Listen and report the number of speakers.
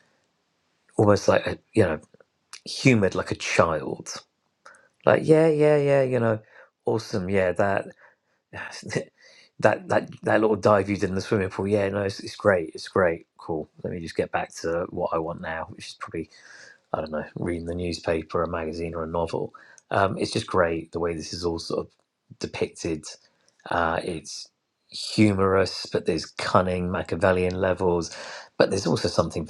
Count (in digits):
1